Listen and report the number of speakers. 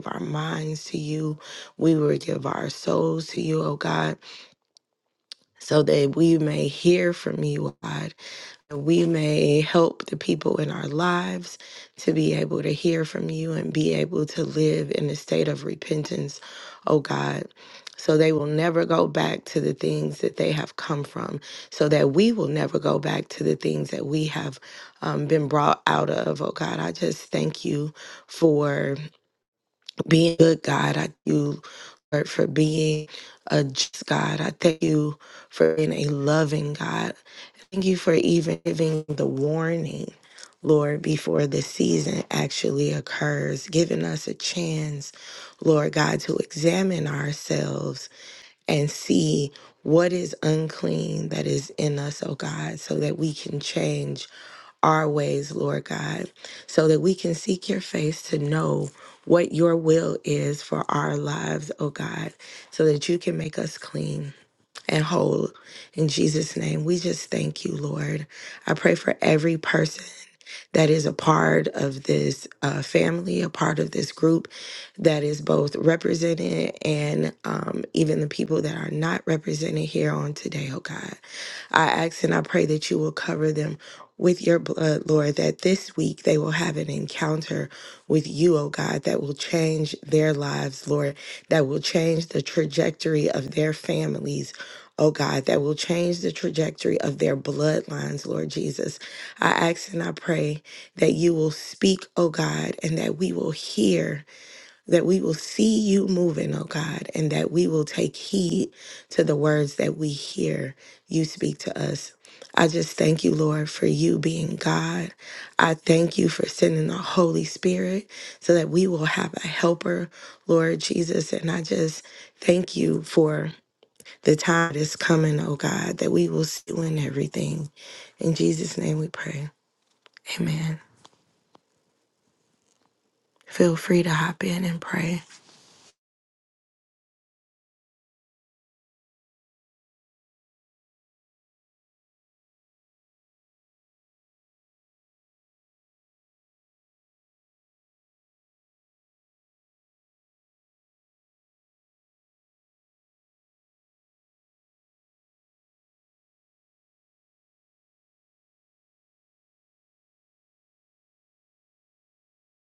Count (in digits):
1